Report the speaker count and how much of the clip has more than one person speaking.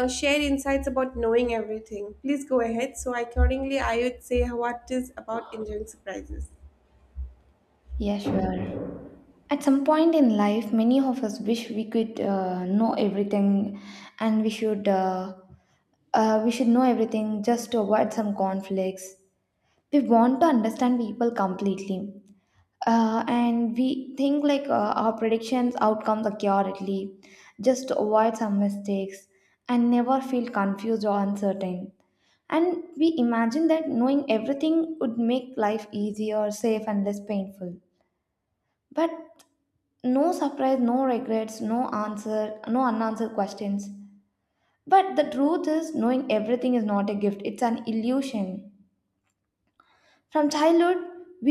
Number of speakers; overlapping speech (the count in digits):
2, no overlap